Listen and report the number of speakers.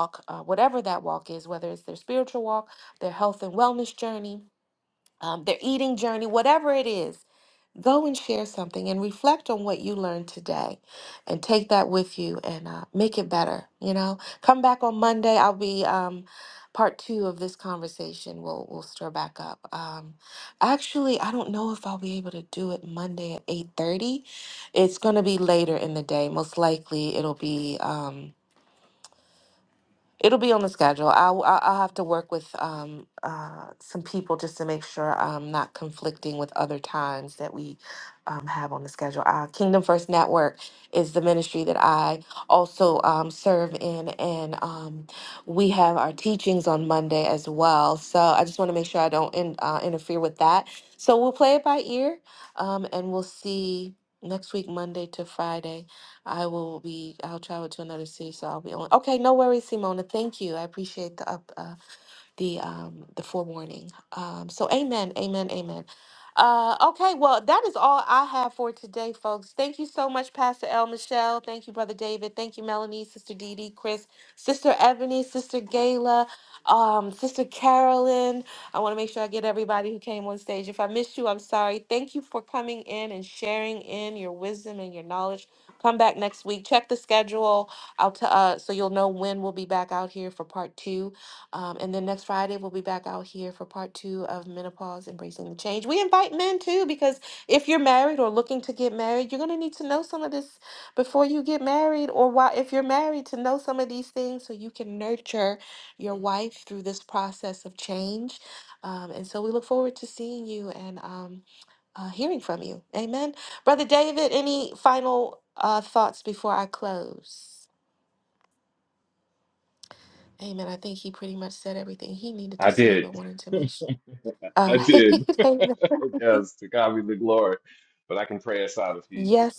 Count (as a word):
two